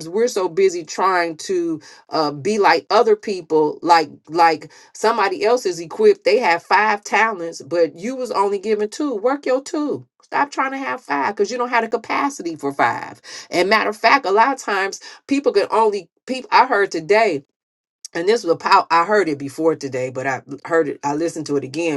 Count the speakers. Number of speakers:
1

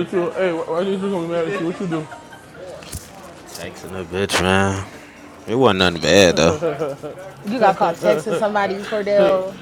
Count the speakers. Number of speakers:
3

